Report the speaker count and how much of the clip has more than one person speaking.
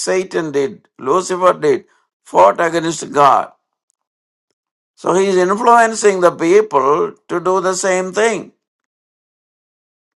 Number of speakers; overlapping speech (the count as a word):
one, no overlap